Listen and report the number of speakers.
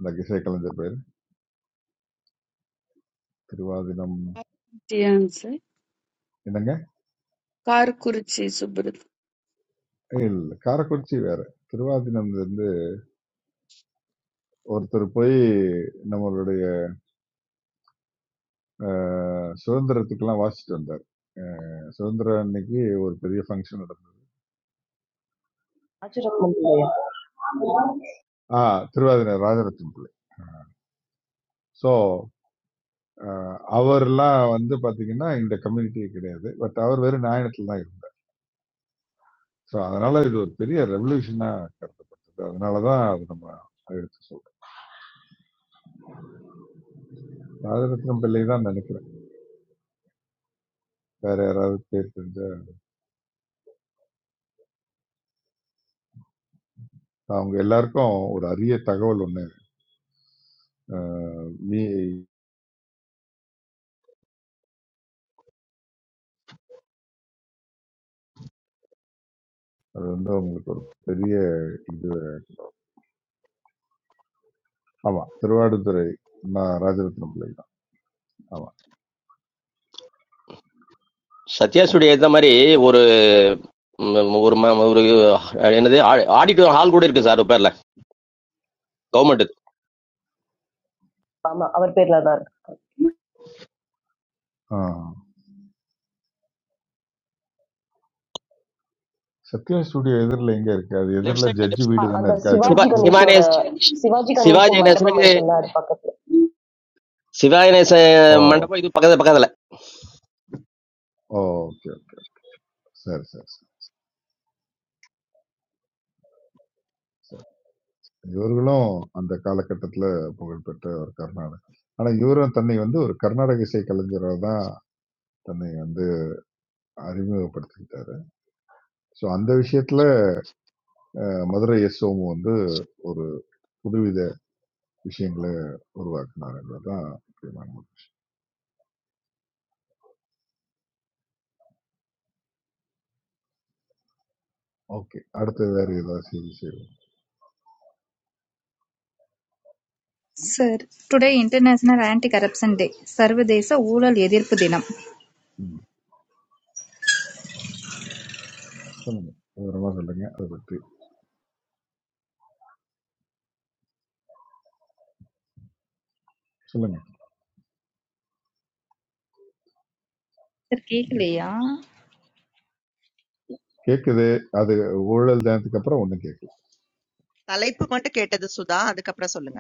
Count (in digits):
6